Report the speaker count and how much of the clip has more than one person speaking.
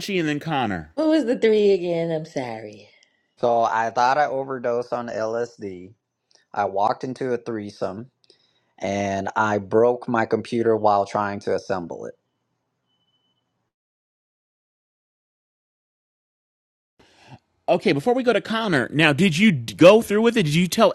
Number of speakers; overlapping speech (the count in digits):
3, no overlap